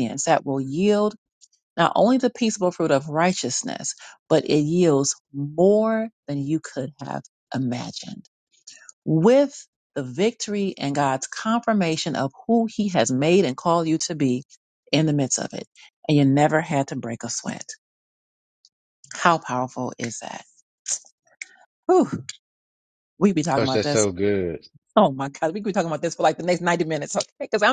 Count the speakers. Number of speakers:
2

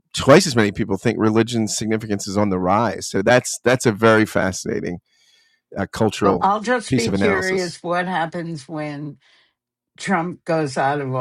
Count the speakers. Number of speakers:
2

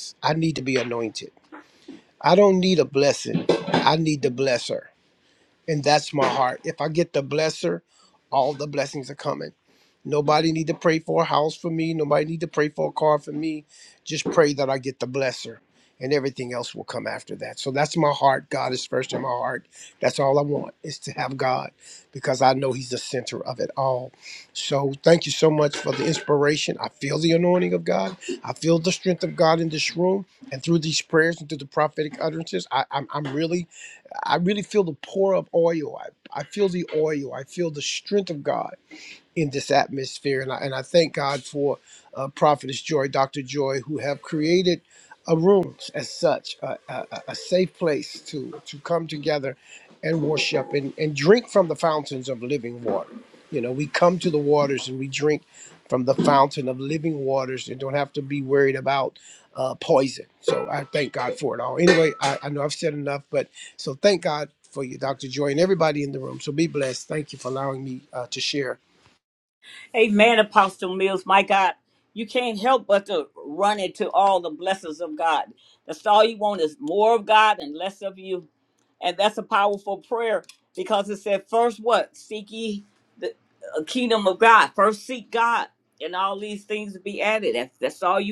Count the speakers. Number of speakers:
2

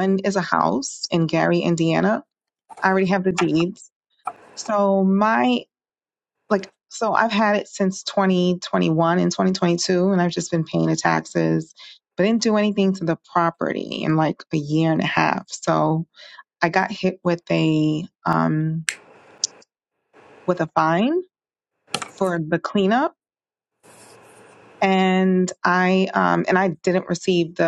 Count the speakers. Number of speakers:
1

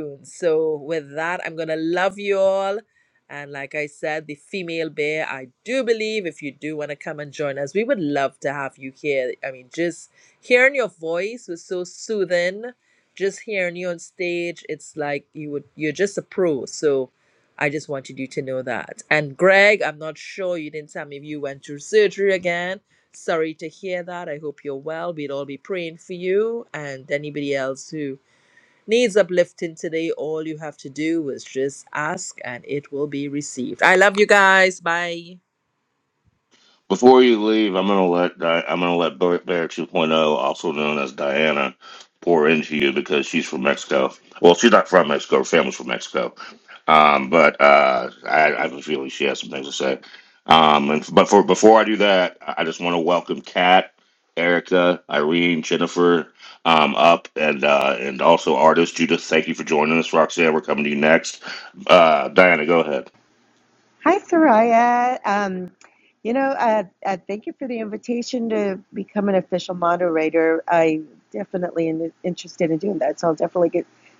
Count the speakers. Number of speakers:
3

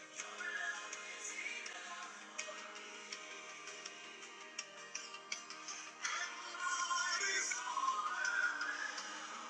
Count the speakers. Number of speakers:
0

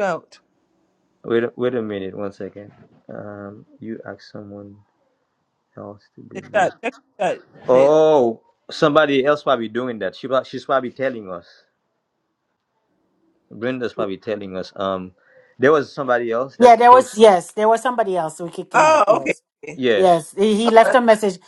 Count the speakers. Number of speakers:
3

